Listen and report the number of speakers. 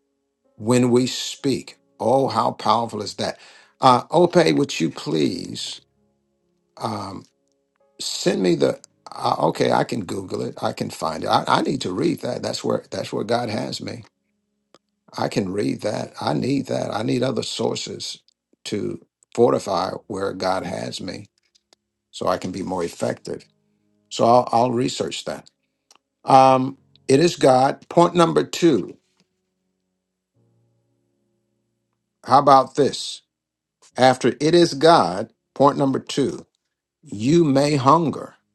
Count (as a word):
one